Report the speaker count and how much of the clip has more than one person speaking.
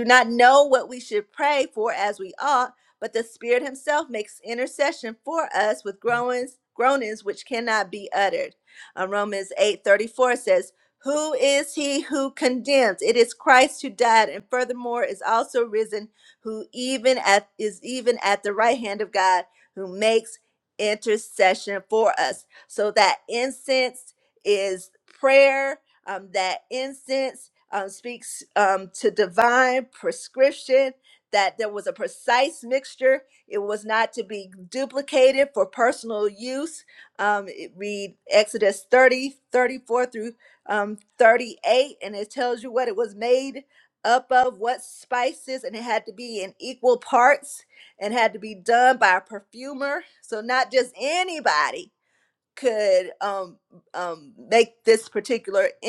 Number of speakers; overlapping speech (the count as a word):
one, no overlap